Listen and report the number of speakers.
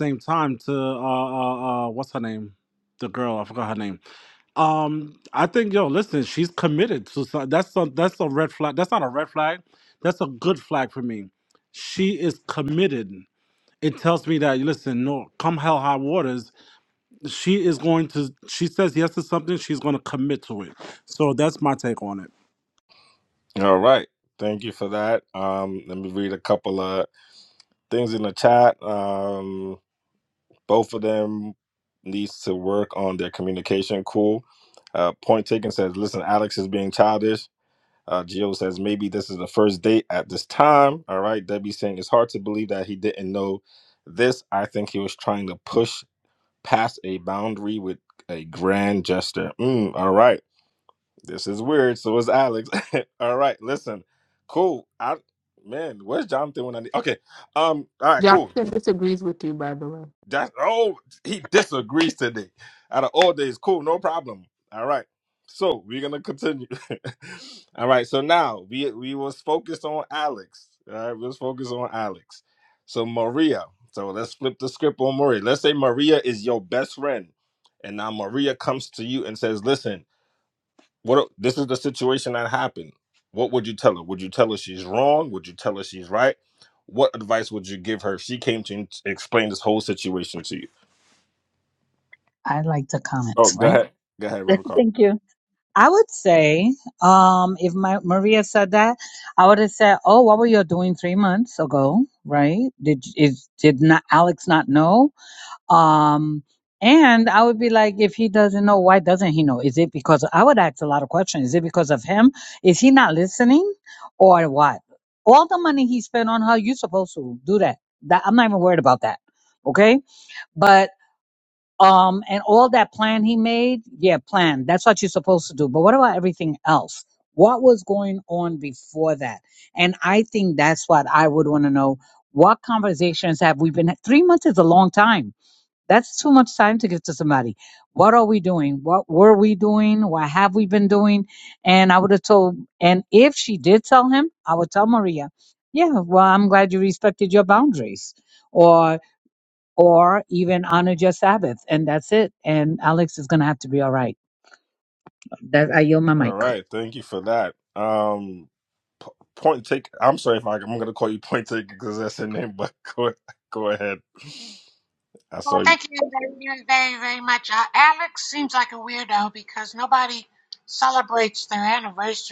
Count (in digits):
5